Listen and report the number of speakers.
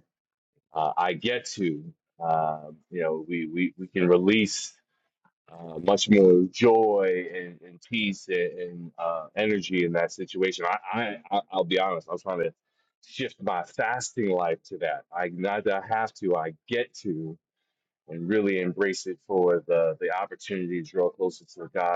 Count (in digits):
1